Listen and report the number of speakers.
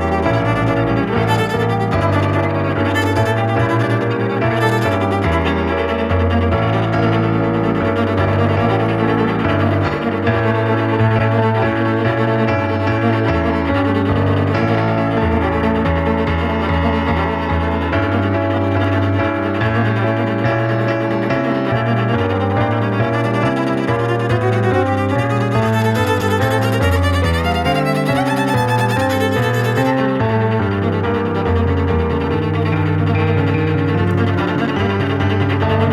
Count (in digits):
0